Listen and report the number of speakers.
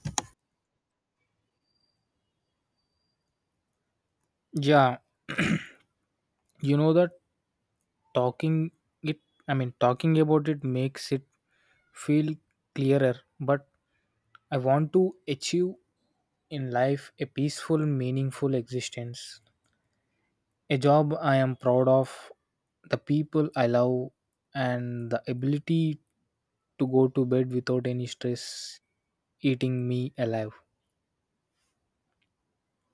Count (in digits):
1